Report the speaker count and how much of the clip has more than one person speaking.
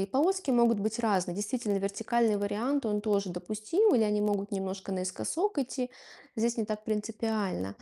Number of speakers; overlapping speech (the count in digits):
1, no overlap